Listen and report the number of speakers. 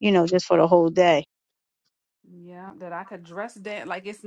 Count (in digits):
2